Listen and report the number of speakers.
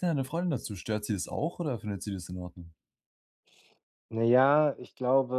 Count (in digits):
2